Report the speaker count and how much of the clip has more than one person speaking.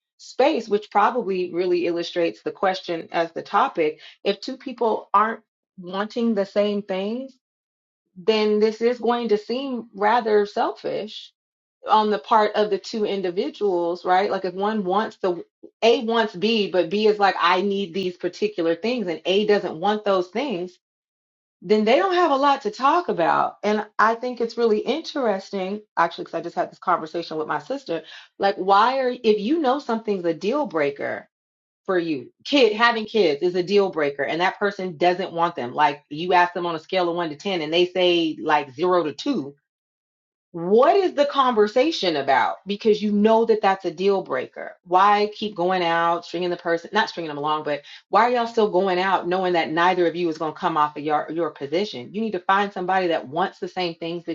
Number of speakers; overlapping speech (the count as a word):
one, no overlap